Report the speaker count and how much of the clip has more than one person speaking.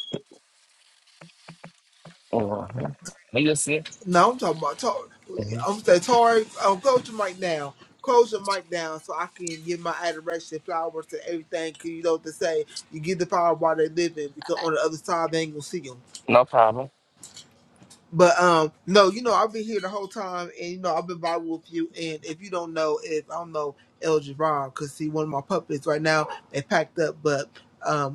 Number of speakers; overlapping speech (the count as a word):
two, no overlap